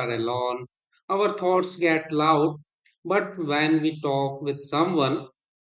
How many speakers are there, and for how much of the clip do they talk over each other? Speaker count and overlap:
one, no overlap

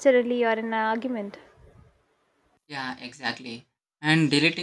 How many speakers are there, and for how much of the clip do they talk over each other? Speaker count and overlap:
two, no overlap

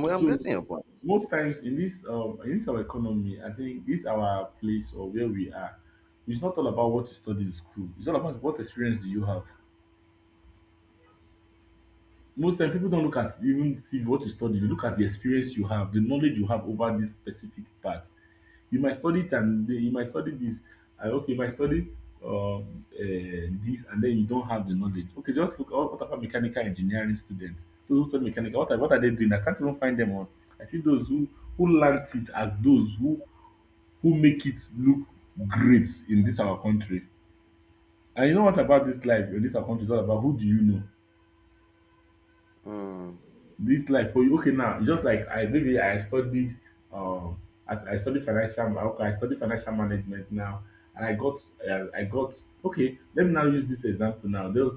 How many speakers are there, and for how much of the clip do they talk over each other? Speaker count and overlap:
two, under 1%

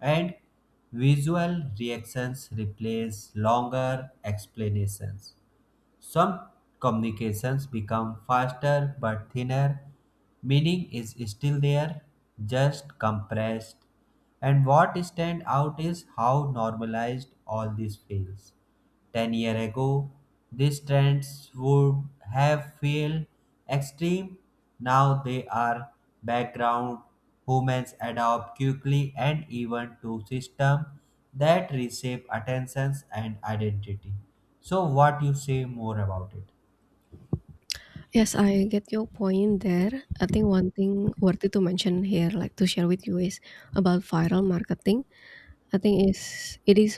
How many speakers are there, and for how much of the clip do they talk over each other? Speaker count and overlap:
two, no overlap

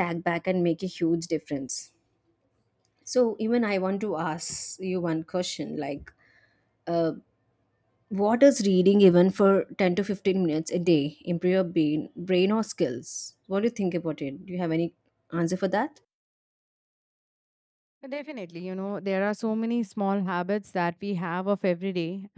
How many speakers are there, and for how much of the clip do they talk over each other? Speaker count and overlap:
two, no overlap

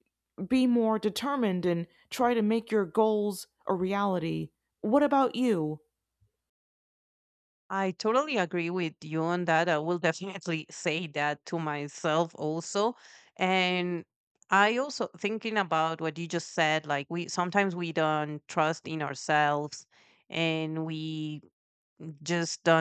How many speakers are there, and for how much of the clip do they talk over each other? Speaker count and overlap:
two, no overlap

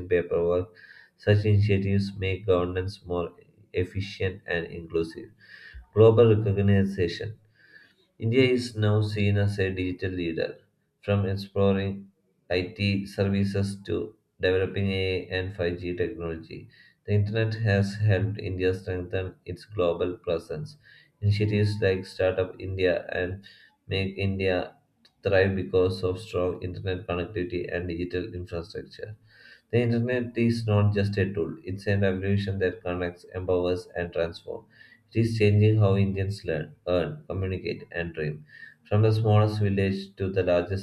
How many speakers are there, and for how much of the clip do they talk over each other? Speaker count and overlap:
one, no overlap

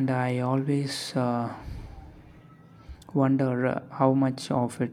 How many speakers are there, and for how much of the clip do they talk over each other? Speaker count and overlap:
one, no overlap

